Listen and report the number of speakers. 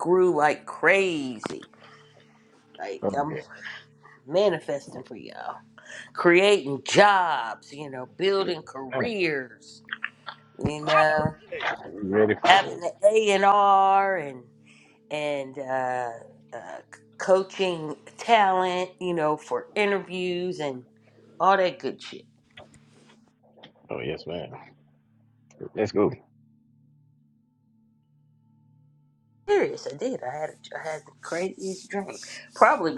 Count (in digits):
2